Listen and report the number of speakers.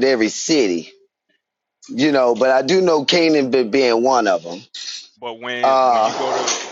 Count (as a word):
two